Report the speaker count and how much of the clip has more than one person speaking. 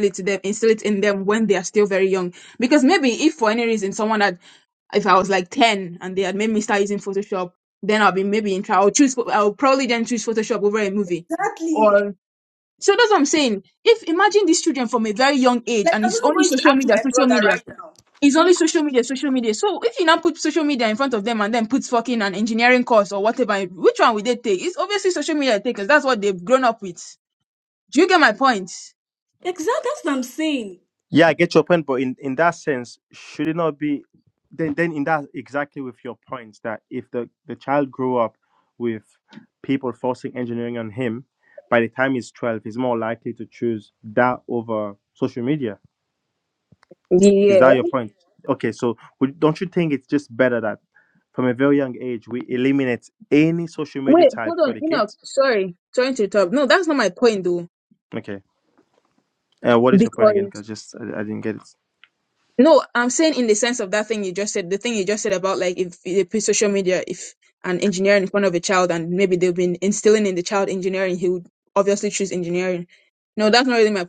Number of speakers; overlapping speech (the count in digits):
3, about 5%